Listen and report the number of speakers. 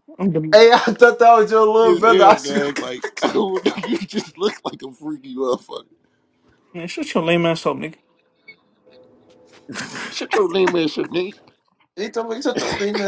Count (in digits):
3